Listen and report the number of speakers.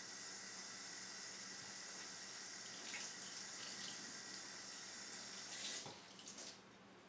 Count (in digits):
0